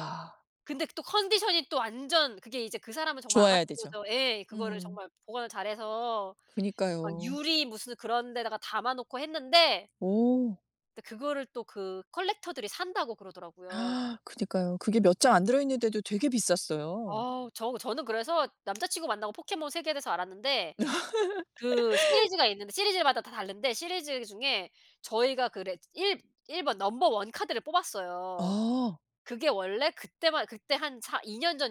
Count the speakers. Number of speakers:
2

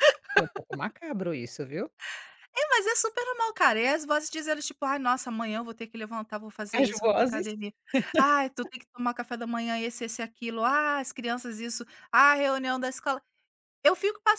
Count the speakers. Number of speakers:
2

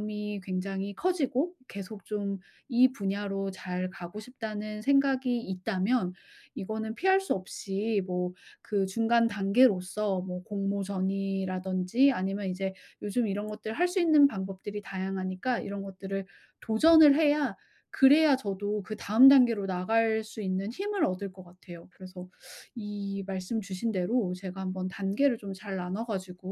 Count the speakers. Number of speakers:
1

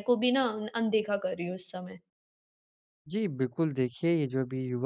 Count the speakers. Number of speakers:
2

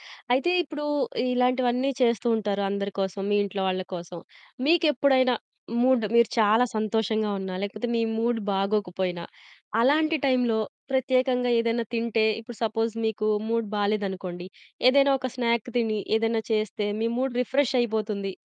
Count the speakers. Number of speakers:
1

